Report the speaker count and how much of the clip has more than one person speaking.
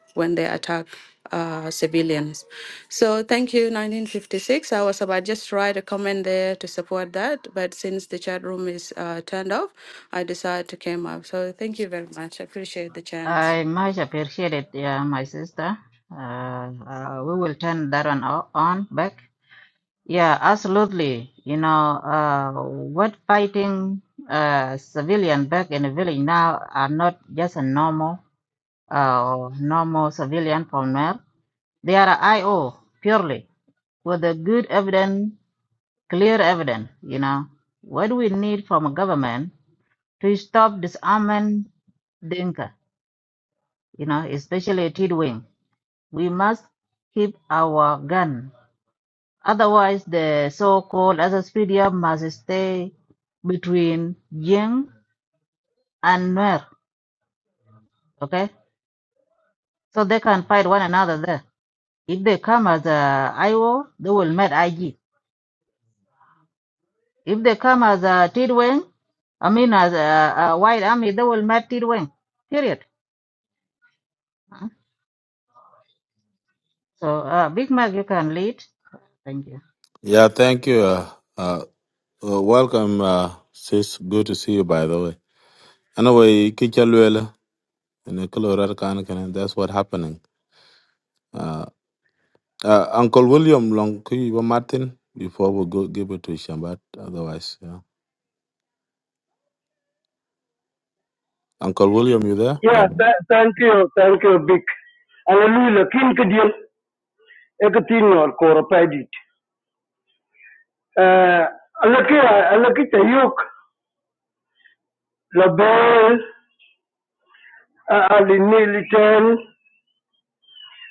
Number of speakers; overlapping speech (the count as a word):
four, under 1%